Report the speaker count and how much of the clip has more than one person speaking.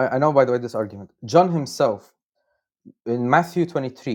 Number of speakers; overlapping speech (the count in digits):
1, no overlap